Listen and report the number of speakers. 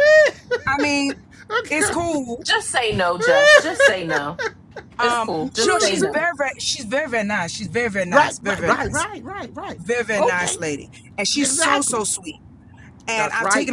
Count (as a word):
three